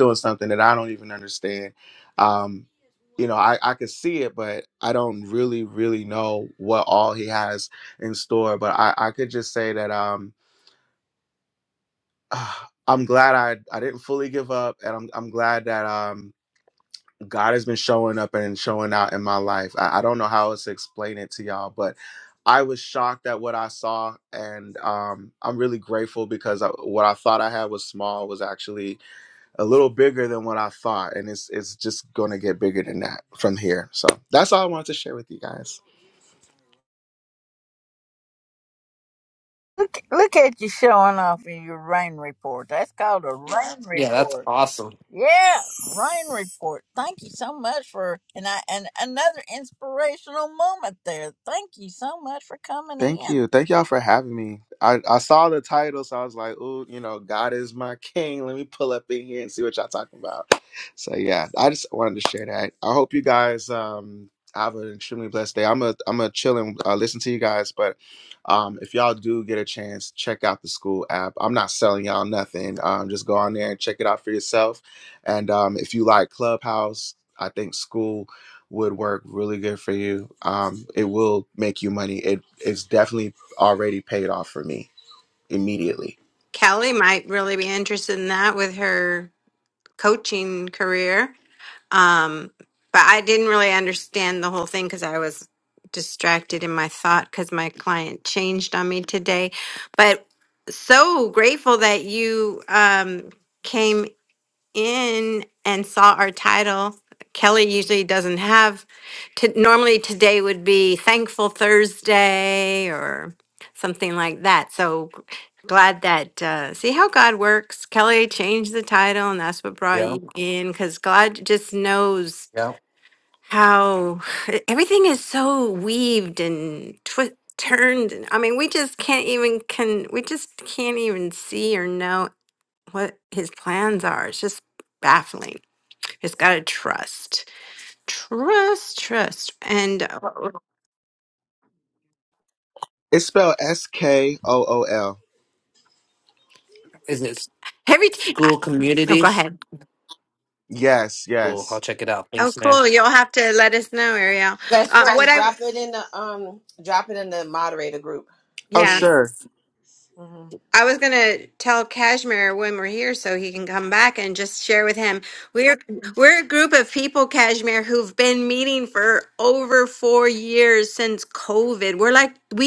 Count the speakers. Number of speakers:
5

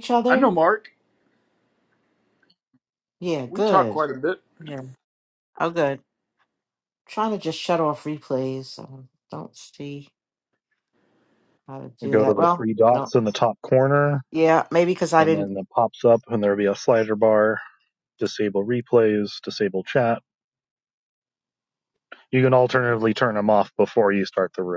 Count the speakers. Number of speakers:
3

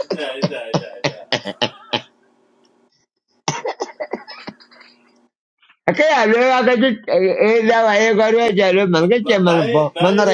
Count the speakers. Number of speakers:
2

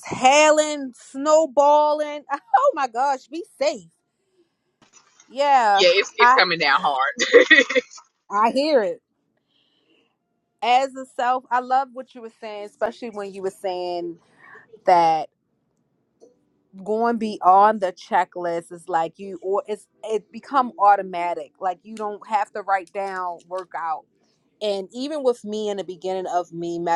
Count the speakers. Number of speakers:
2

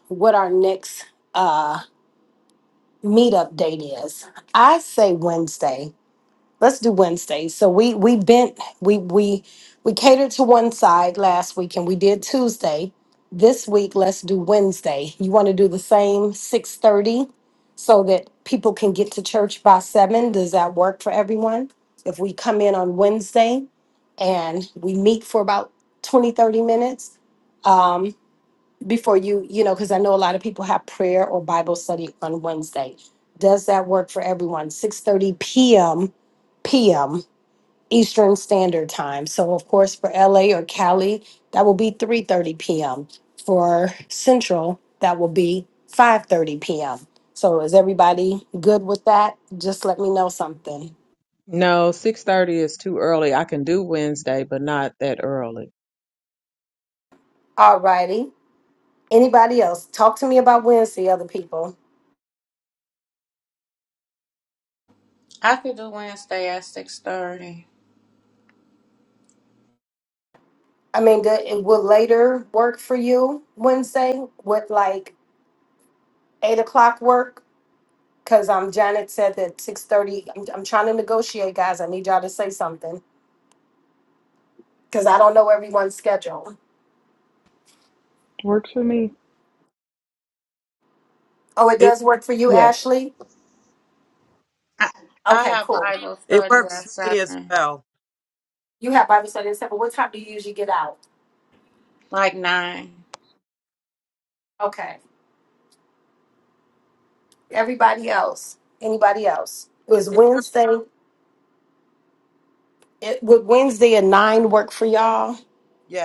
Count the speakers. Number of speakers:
5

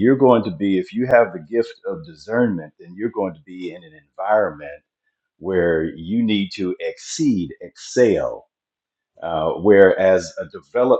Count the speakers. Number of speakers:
1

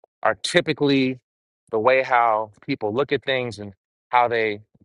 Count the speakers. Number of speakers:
1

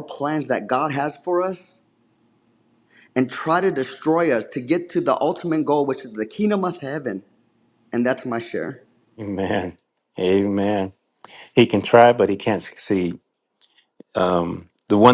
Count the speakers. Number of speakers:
2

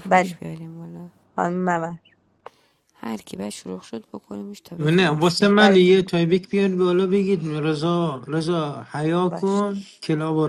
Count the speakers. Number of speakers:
3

